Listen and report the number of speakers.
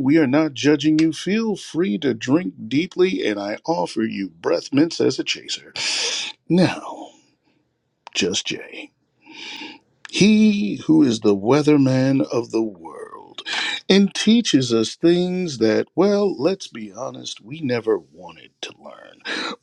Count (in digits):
1